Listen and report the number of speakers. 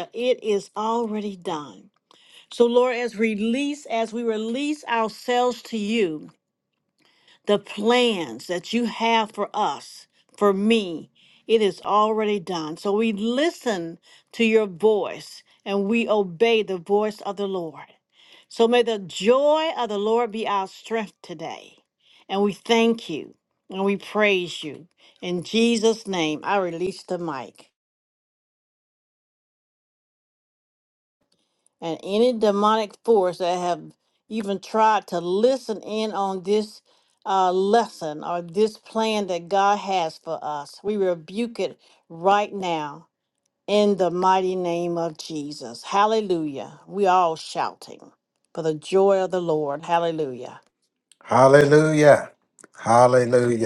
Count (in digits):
2